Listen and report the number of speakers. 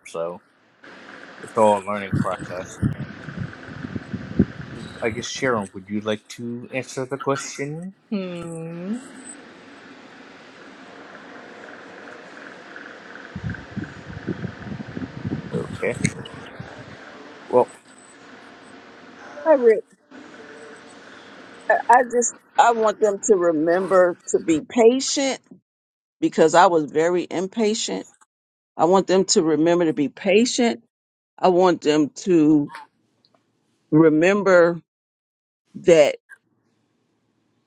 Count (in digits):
2